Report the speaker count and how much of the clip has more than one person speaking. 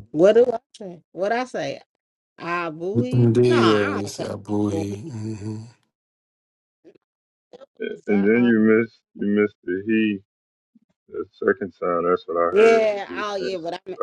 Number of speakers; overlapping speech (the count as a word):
three, about 21%